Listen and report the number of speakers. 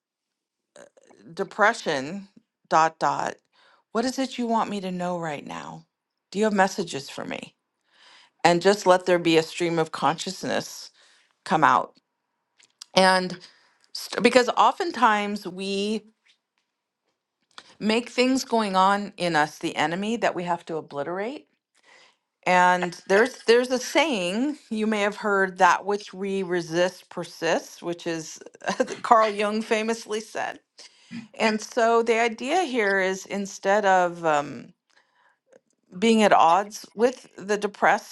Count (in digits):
1